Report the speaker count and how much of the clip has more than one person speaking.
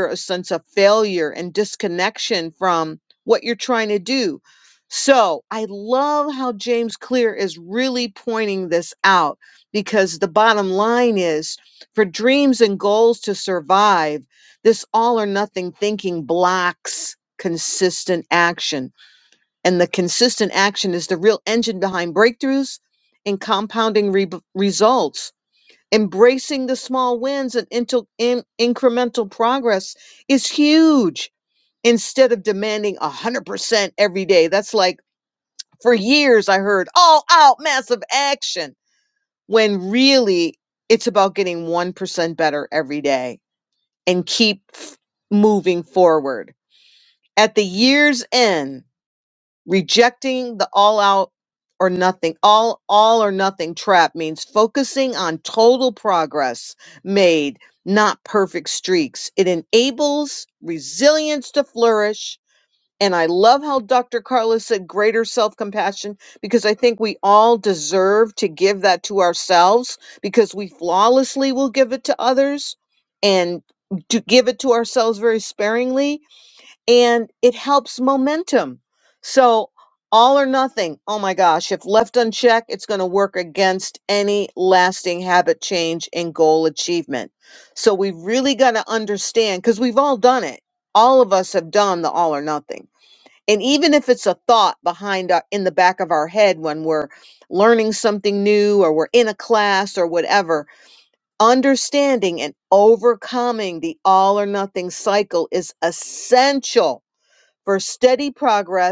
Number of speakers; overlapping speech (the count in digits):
1, no overlap